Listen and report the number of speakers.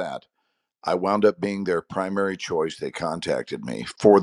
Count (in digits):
1